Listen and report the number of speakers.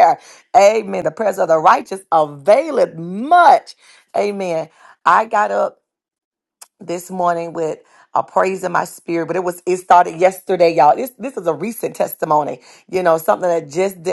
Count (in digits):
1